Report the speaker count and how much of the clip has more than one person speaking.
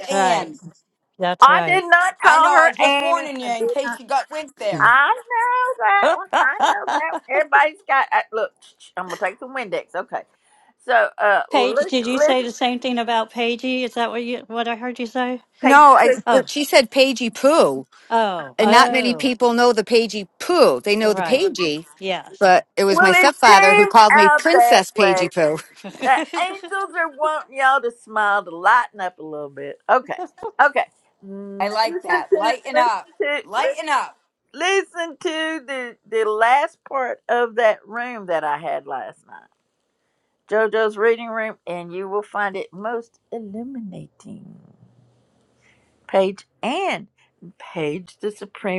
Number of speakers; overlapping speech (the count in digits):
4, about 20%